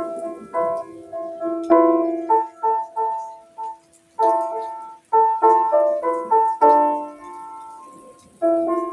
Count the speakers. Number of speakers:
0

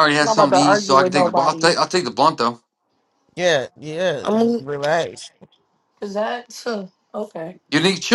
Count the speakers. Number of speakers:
3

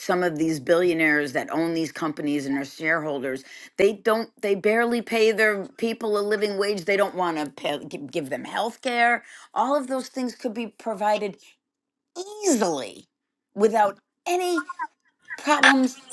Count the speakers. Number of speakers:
1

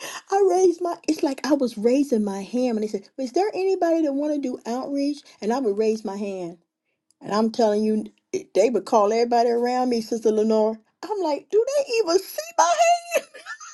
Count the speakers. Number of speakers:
1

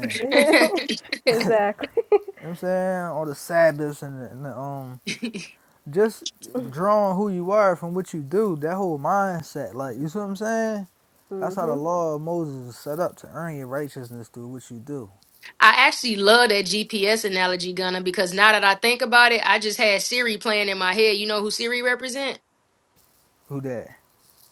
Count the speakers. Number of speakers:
3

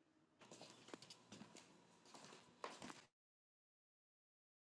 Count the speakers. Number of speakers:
0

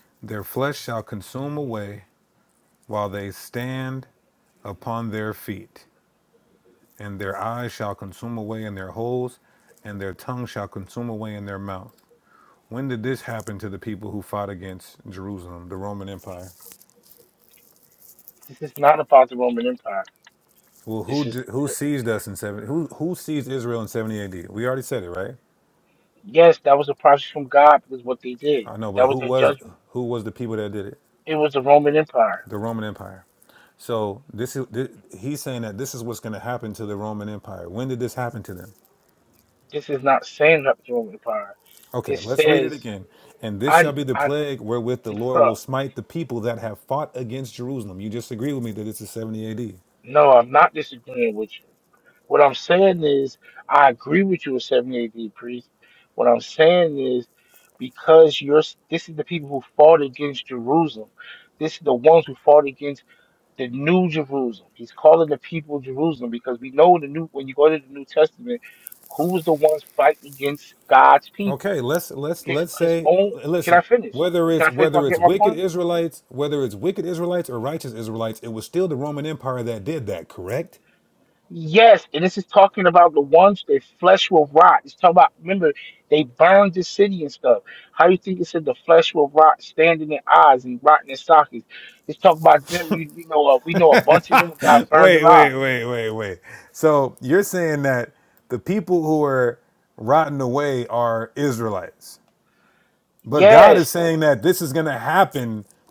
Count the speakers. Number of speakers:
2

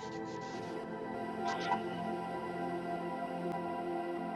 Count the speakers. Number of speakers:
0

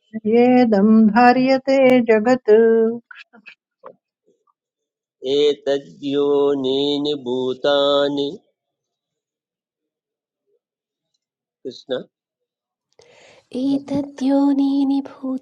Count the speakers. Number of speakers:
3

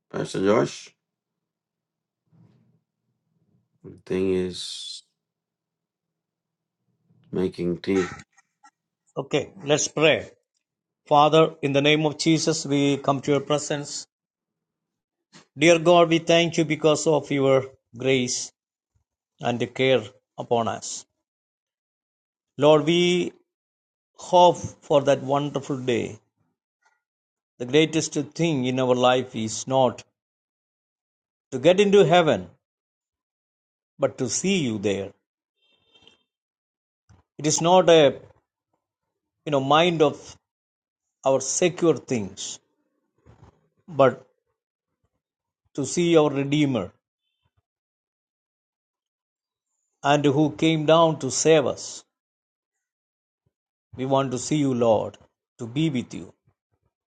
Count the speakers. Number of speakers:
2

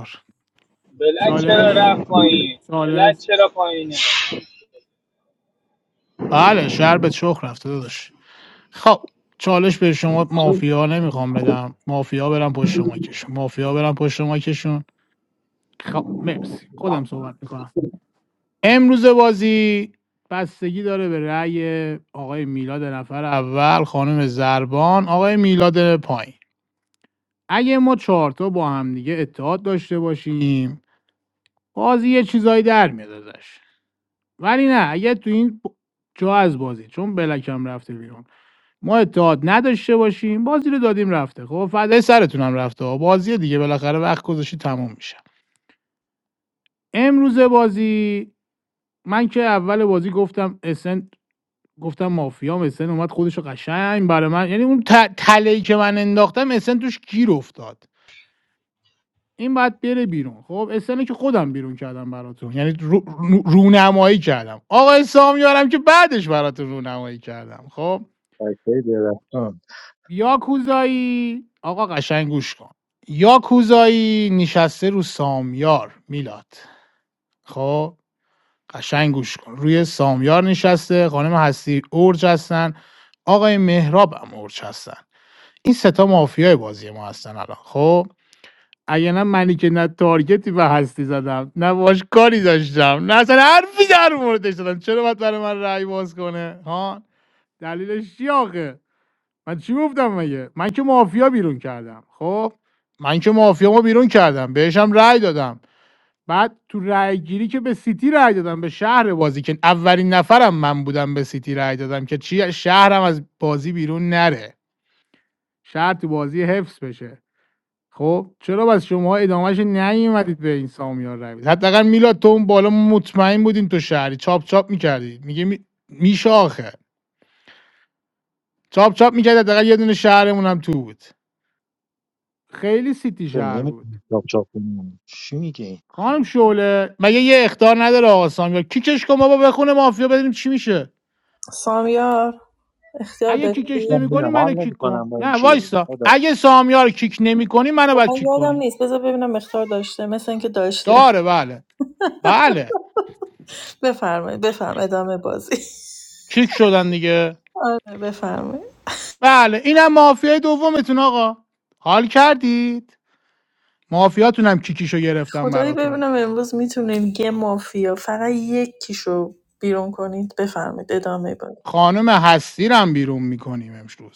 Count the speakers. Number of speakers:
4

